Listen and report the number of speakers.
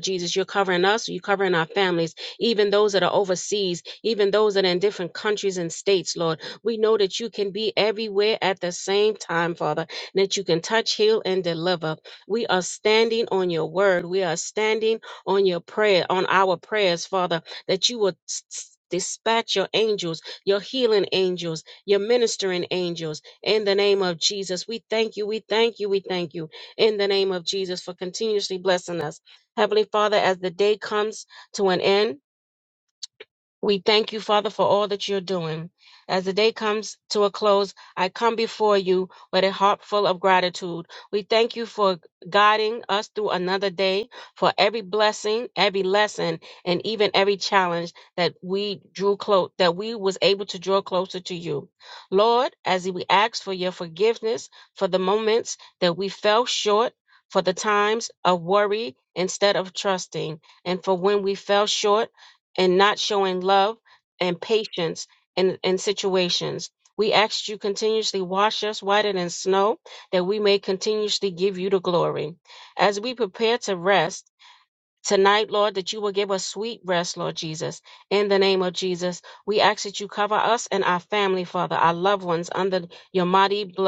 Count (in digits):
1